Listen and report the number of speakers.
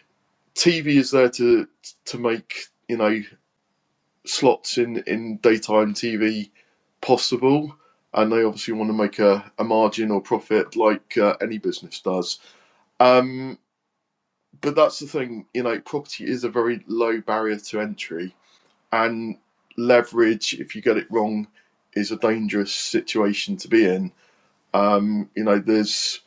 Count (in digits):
1